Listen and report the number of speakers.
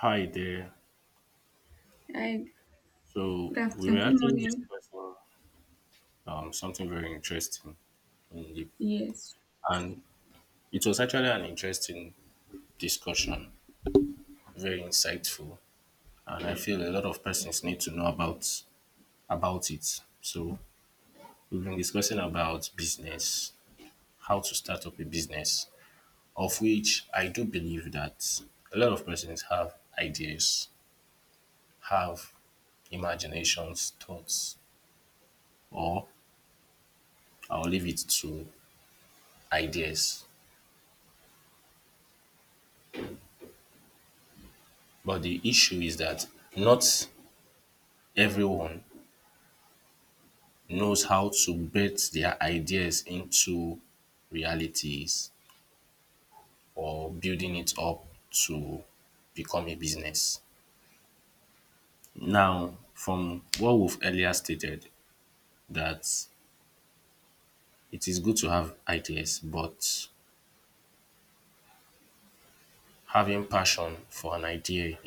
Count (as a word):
two